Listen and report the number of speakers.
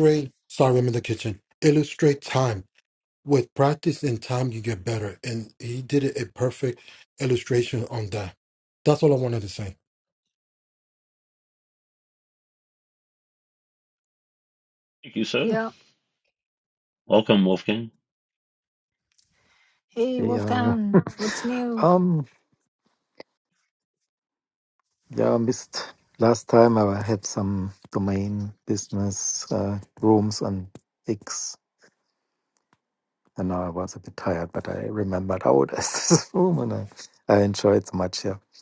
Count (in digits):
4